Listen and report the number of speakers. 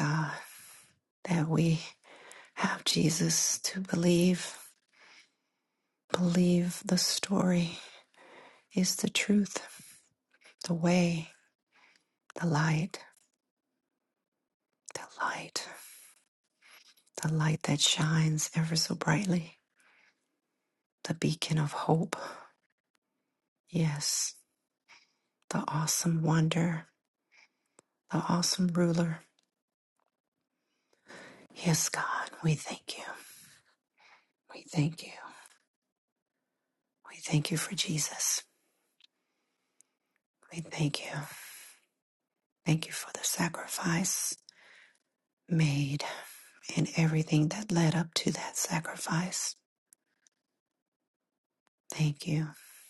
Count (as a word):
one